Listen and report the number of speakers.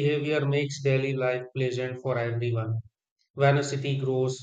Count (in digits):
1